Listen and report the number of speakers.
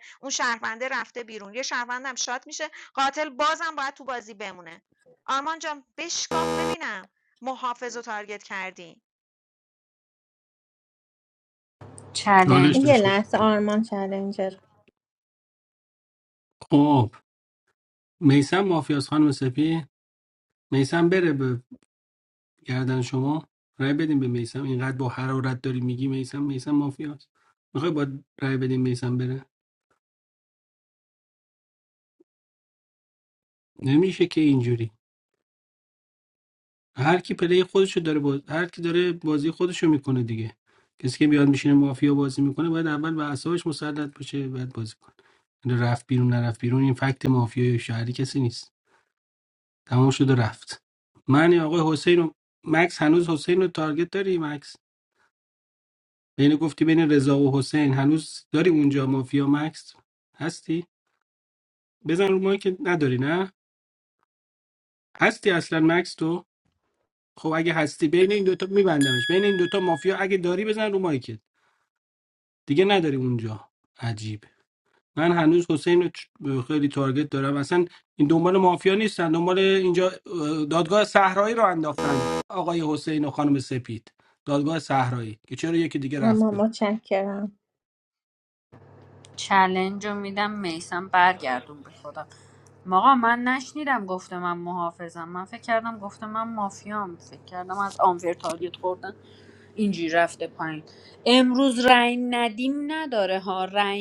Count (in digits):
4